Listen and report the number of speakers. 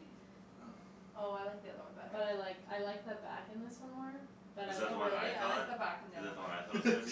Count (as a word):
three